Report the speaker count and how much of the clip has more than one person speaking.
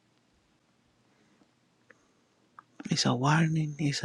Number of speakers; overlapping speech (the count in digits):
1, no overlap